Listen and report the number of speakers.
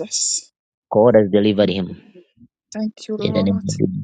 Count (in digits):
2